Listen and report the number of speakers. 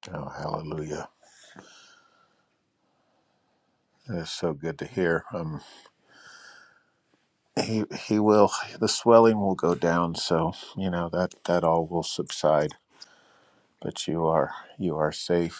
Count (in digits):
1